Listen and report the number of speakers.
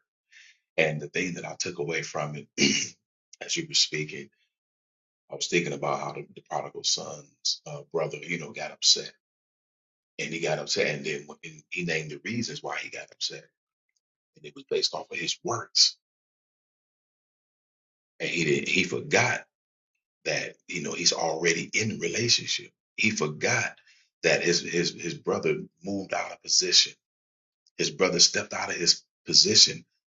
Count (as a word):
one